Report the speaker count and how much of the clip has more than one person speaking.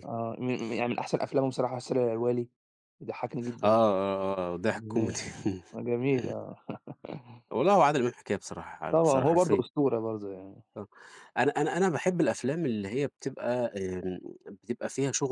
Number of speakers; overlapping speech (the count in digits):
2, about 5%